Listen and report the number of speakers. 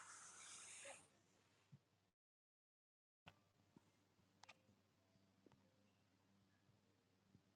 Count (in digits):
0